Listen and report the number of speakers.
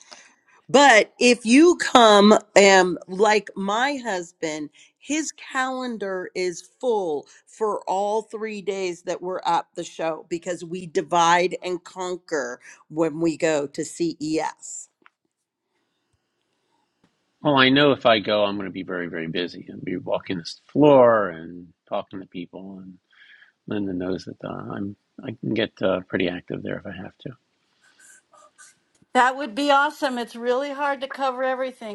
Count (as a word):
three